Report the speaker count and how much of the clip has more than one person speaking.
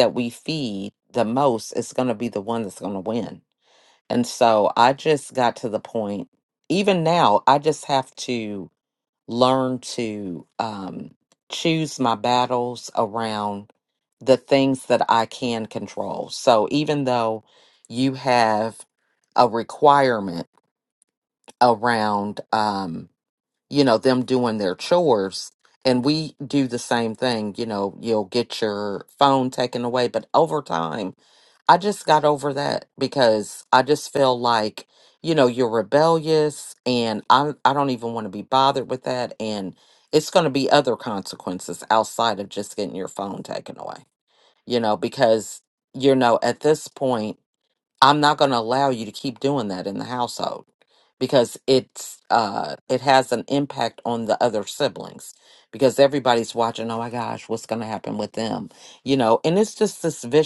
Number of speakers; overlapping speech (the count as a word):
one, no overlap